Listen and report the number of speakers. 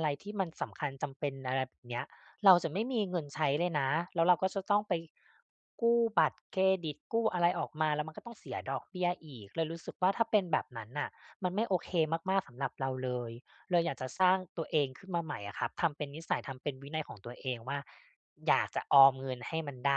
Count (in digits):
1